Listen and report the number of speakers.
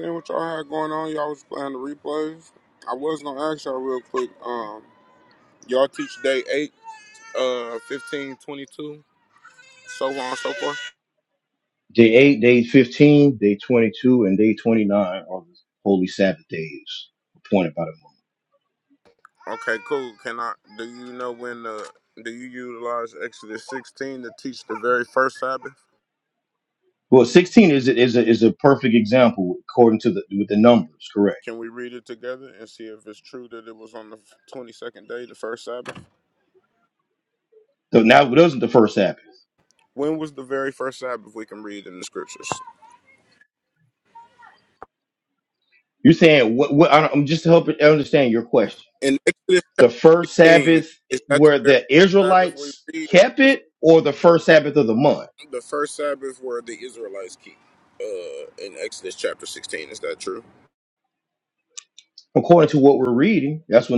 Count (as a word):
two